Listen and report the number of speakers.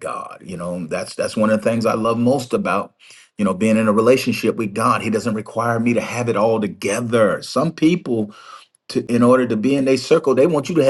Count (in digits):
1